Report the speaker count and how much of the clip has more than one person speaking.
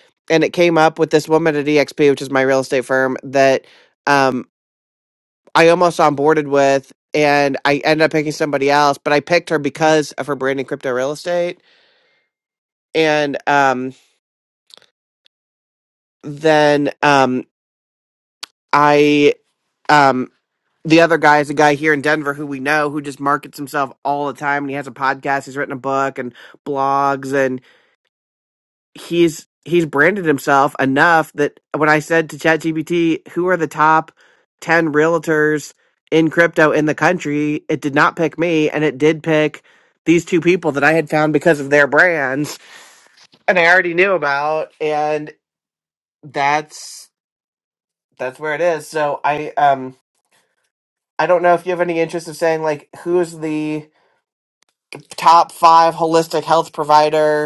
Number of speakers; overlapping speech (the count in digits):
1, no overlap